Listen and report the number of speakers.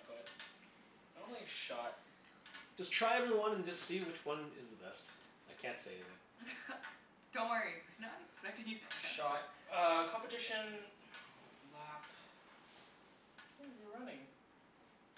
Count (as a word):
three